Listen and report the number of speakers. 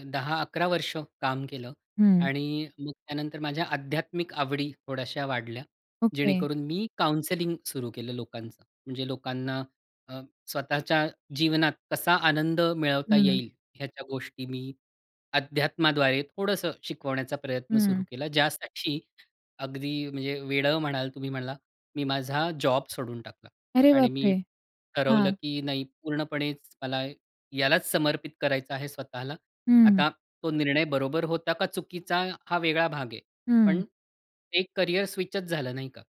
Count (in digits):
2